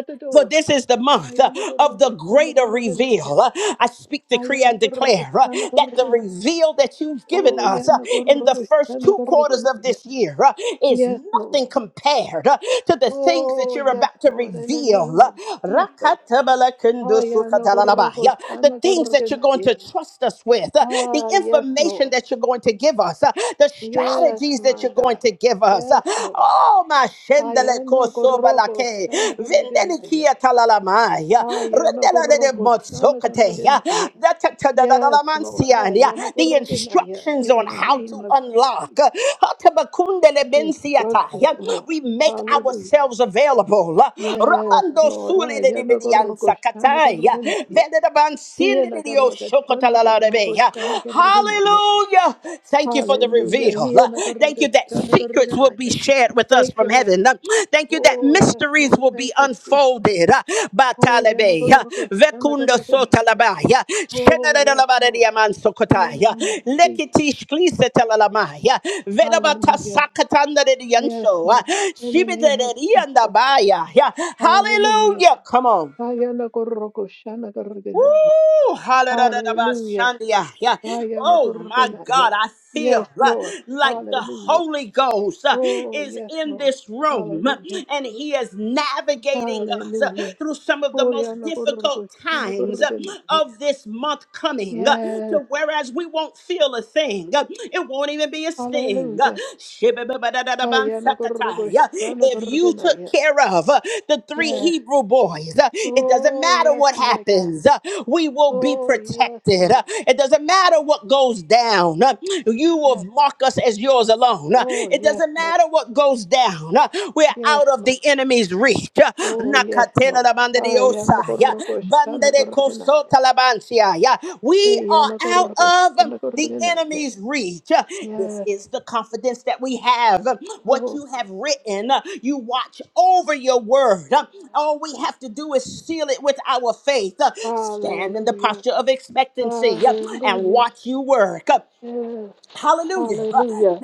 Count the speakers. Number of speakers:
2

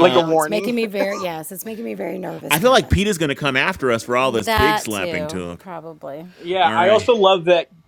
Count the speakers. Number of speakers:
3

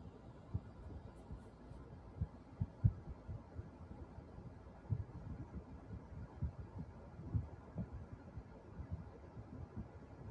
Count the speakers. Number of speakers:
0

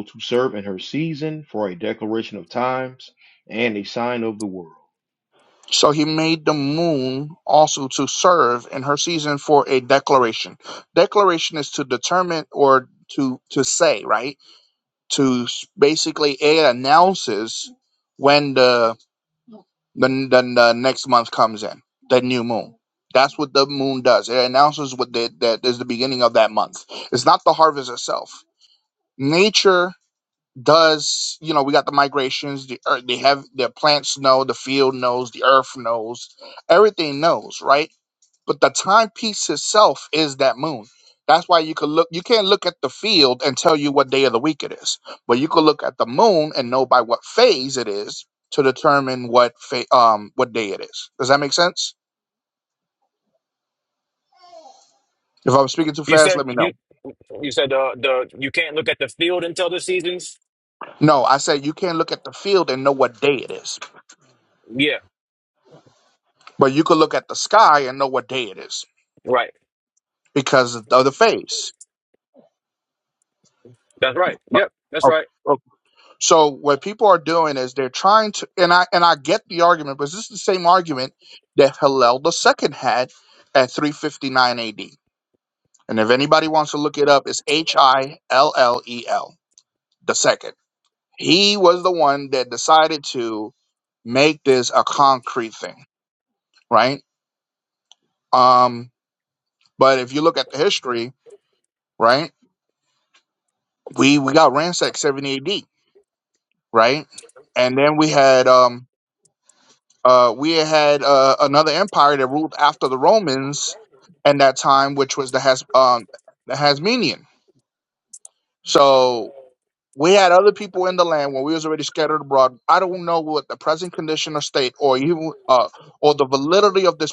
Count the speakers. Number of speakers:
3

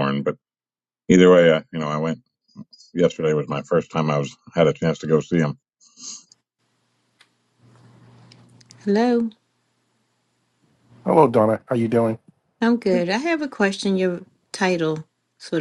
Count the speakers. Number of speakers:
3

